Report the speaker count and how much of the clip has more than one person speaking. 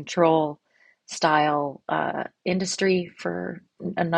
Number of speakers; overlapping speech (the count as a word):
one, no overlap